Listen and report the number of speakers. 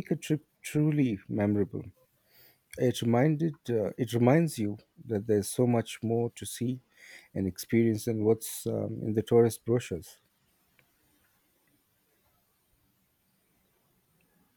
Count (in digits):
1